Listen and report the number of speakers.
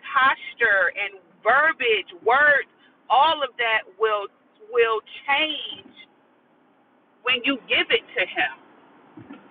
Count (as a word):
one